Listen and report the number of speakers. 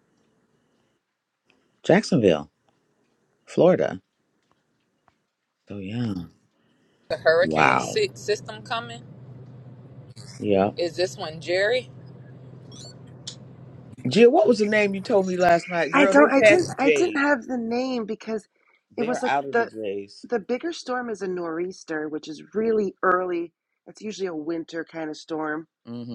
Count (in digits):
3